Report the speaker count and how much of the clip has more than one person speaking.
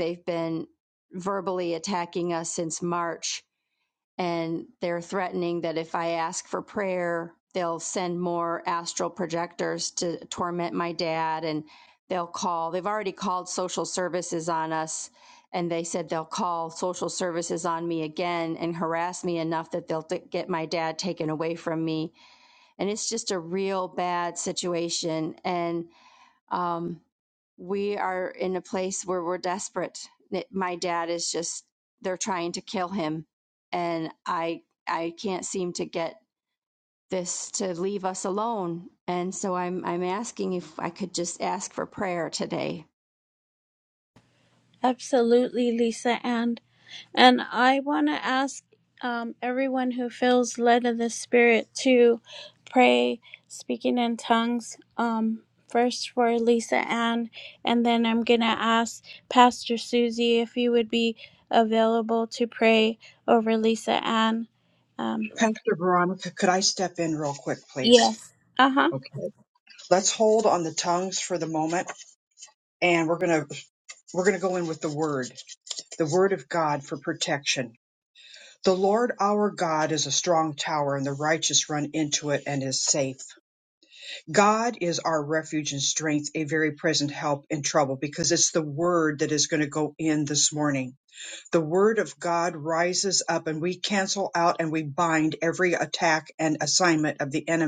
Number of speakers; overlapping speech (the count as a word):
three, under 1%